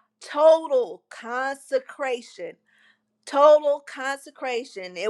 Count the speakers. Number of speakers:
one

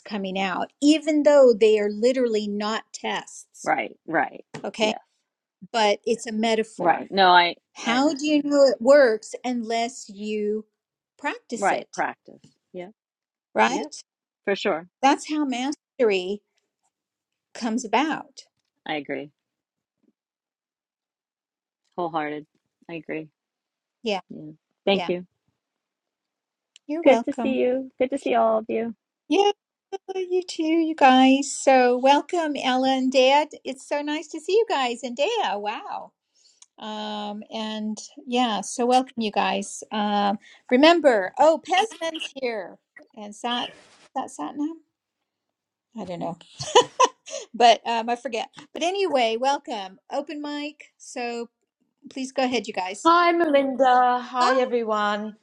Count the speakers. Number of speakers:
three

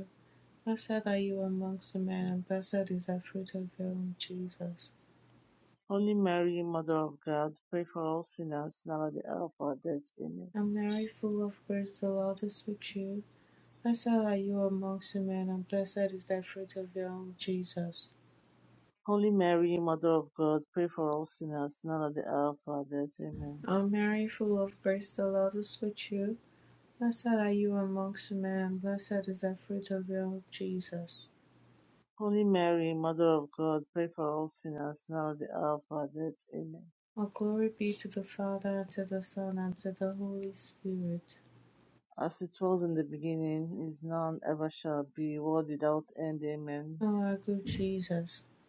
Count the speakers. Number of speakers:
two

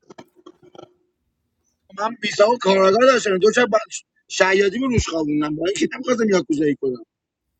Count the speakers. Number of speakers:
one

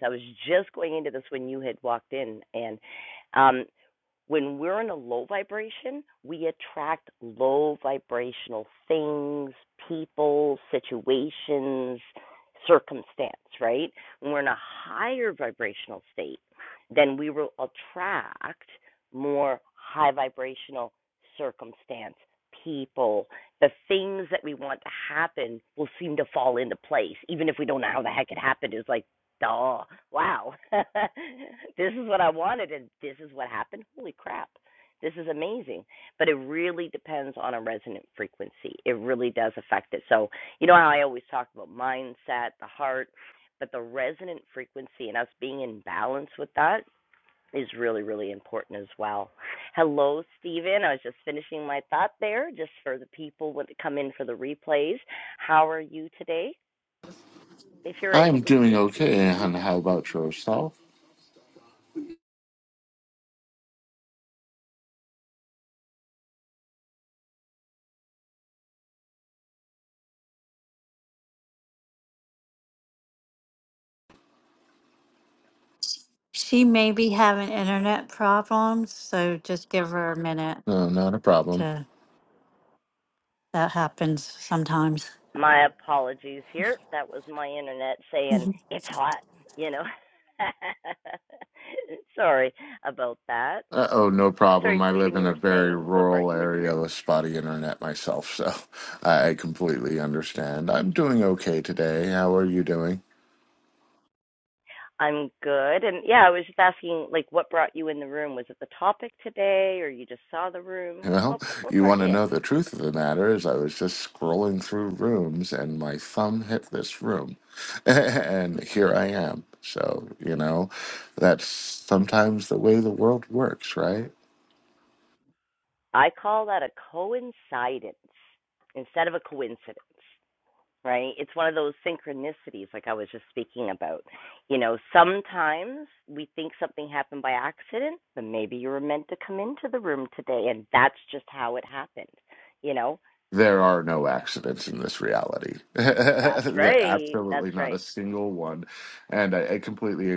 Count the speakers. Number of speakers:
three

